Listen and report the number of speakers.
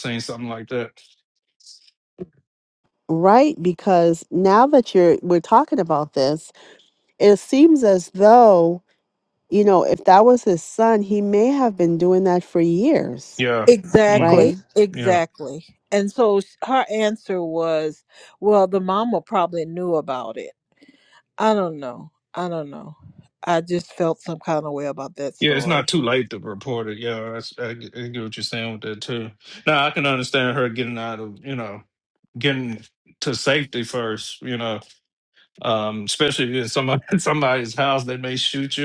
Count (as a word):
three